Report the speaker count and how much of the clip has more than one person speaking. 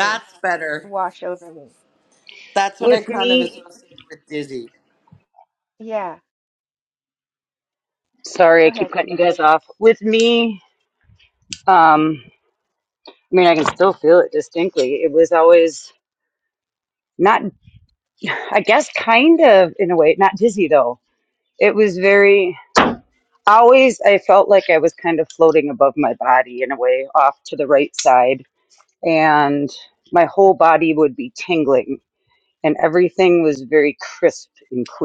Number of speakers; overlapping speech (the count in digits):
3, about 4%